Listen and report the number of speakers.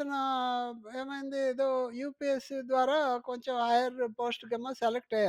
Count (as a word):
one